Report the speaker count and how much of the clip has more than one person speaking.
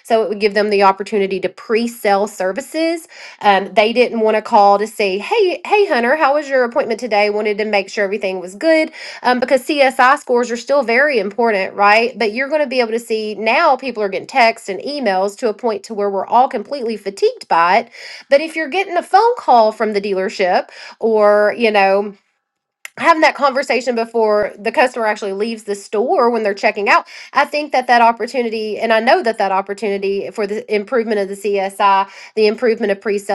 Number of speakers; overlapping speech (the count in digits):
1, no overlap